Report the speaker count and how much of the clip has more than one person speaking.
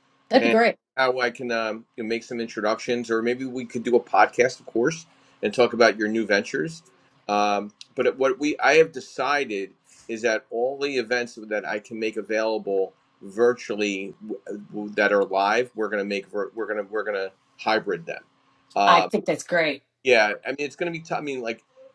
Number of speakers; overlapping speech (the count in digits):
2, about 2%